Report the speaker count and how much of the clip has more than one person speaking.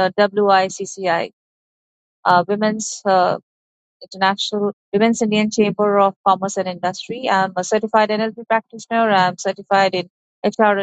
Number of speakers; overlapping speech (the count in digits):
1, no overlap